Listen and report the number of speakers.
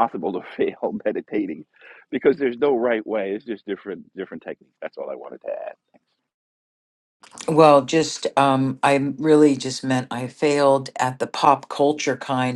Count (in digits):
2